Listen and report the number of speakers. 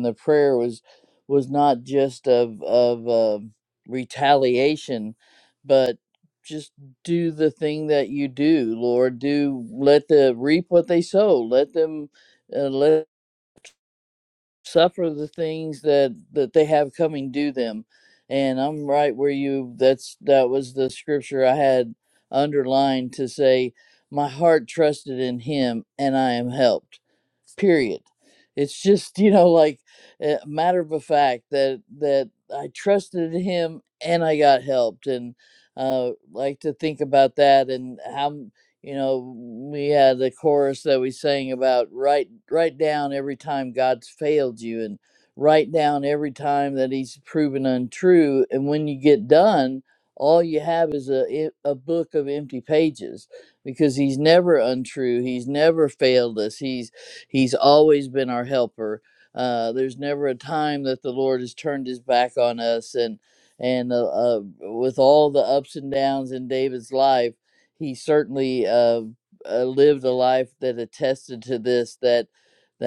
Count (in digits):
1